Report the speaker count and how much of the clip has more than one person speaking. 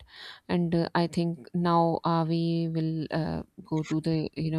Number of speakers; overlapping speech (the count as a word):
one, no overlap